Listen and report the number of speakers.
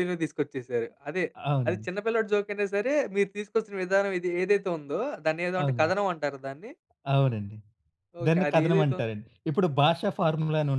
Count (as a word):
two